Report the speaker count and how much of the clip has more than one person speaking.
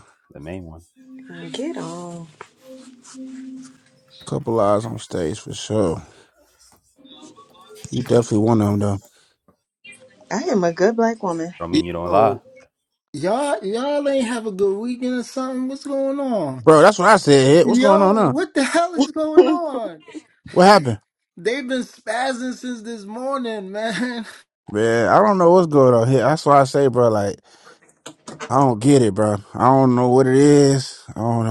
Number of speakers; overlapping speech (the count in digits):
4, about 4%